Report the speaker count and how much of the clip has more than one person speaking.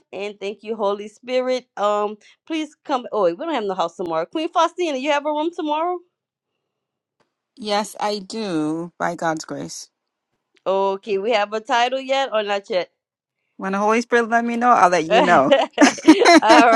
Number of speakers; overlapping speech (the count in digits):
2, about 3%